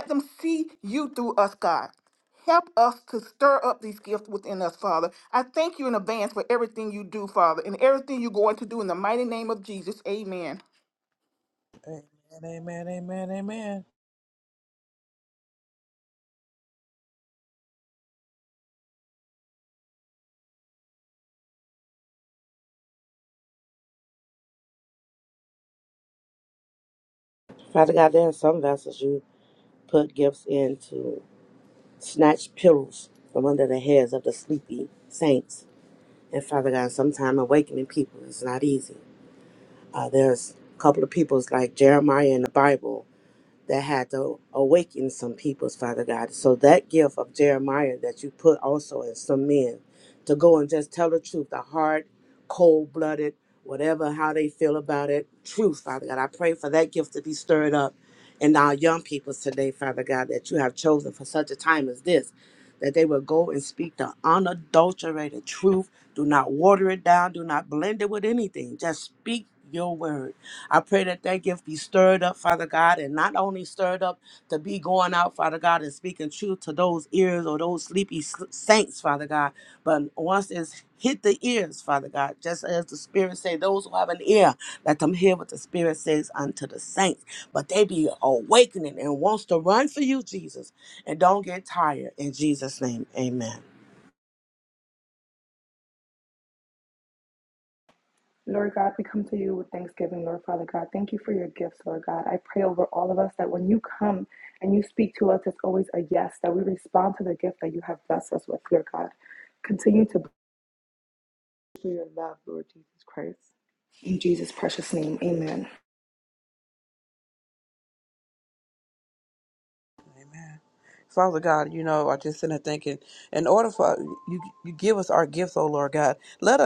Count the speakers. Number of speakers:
4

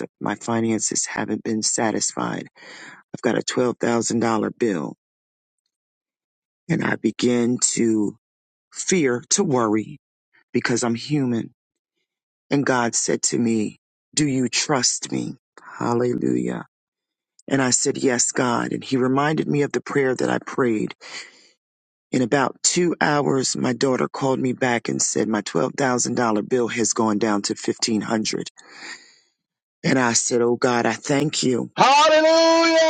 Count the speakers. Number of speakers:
2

